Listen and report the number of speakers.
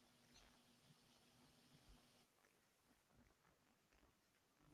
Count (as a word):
zero